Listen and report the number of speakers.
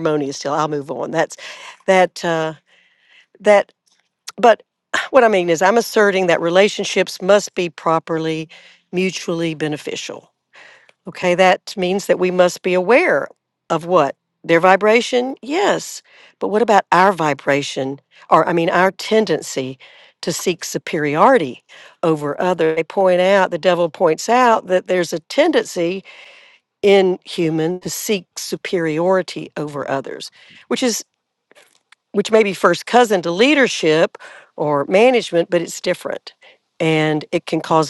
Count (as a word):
one